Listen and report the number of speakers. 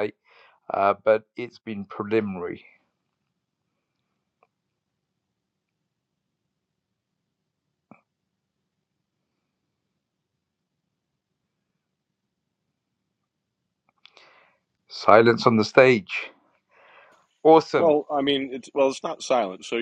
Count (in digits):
2